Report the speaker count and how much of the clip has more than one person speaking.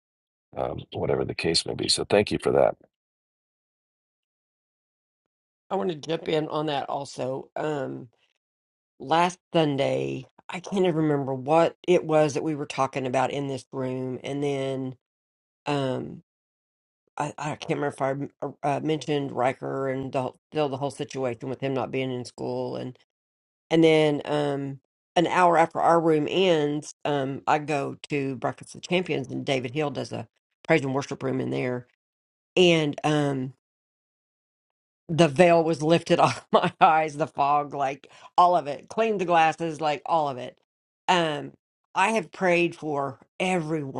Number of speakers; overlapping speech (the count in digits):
2, no overlap